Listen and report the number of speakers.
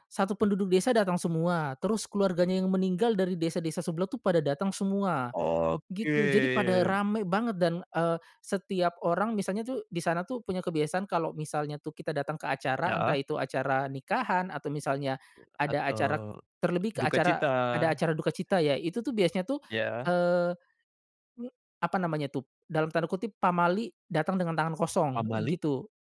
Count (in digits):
2